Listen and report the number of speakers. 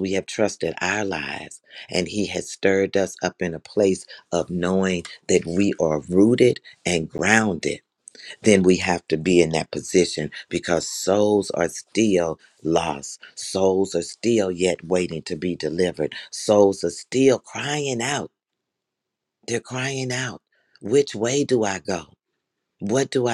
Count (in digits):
1